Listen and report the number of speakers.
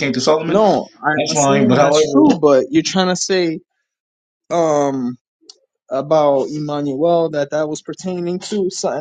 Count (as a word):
two